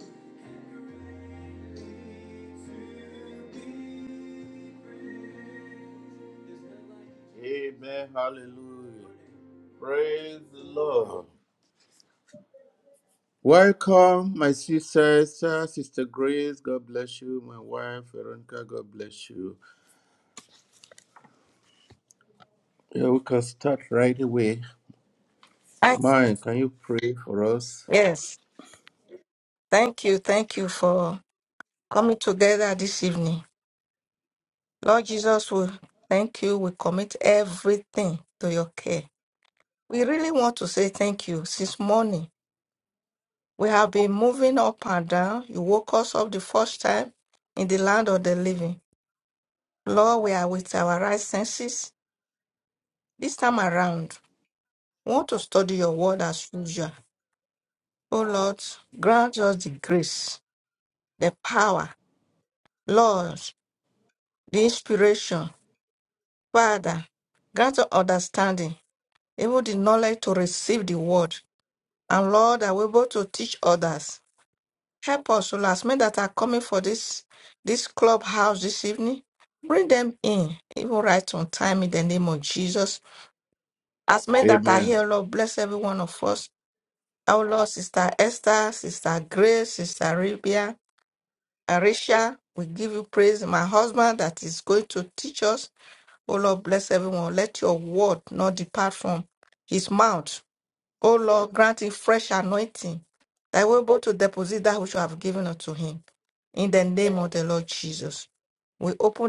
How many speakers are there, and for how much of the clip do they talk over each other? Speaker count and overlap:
2, about 1%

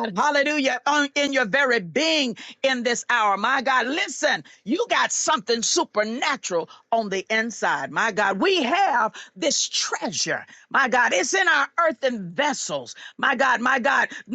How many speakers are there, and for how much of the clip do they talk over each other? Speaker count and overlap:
1, no overlap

